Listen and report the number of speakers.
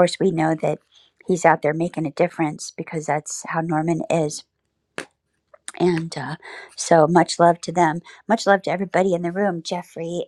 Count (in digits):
1